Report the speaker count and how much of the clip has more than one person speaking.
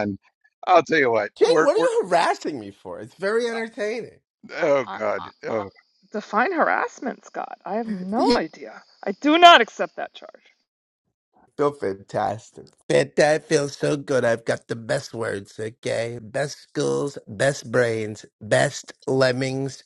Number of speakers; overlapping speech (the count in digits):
3, about 8%